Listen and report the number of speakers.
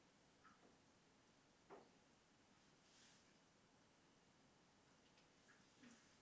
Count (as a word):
zero